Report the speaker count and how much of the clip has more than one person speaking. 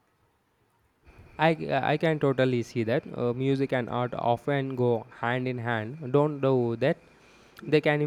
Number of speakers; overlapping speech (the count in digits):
1, no overlap